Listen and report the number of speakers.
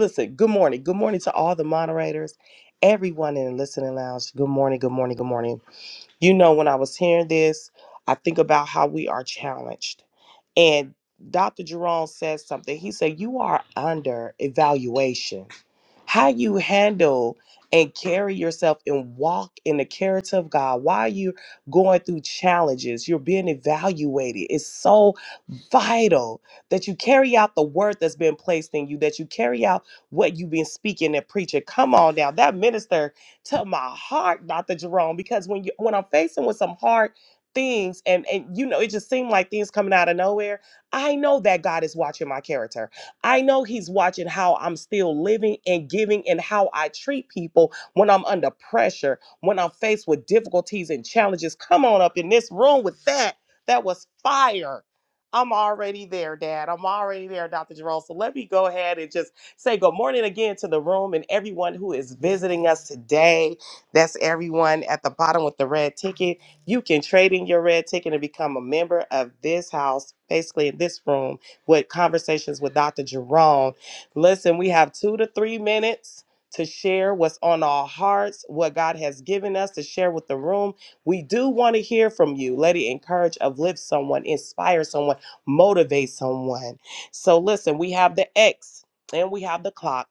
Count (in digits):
1